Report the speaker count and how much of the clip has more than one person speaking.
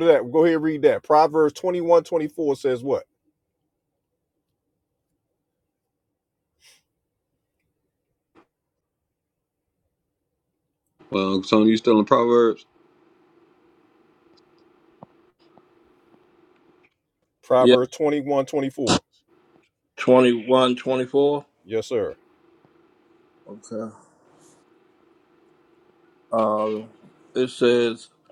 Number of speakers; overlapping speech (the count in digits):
3, about 1%